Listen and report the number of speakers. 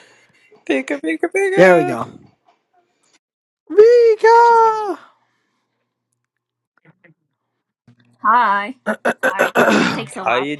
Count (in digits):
3